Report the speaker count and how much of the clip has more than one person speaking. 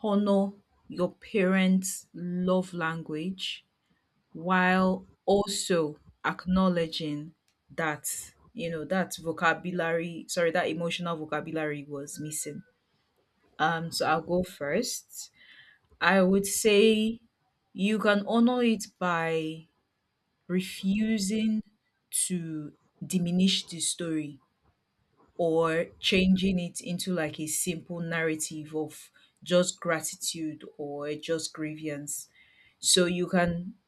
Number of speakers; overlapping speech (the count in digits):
1, no overlap